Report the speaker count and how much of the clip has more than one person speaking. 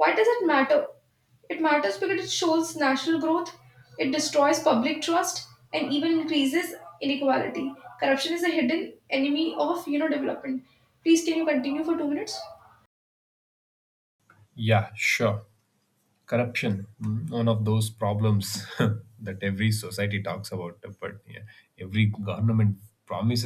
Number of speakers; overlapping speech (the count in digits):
2, no overlap